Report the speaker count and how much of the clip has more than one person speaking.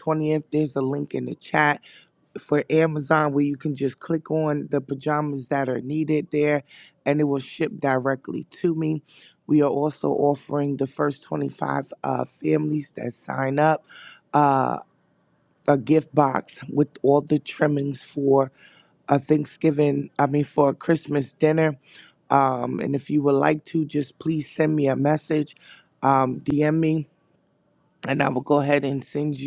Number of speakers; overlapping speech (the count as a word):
one, no overlap